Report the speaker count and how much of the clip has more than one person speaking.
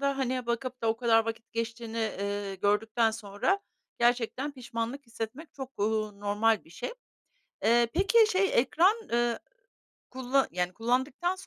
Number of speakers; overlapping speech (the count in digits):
1, no overlap